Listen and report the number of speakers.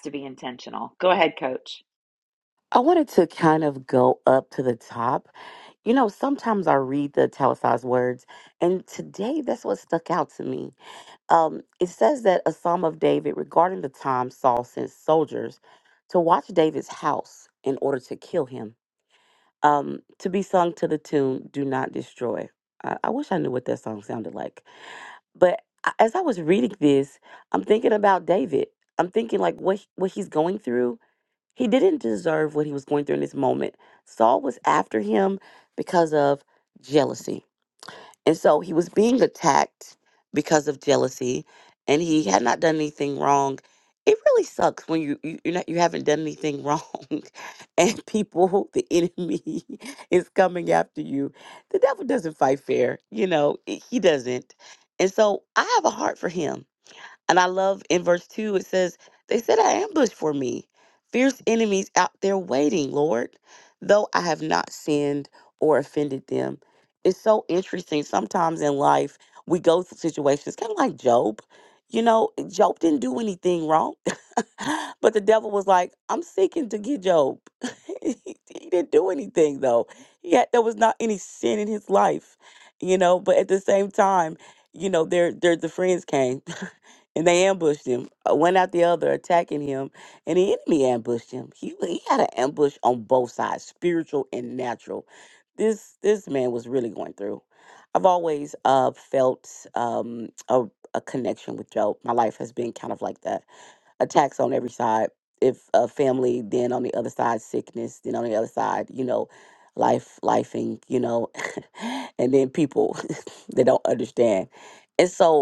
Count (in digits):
2